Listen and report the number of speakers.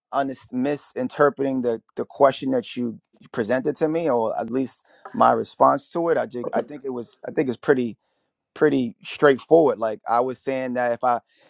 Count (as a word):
one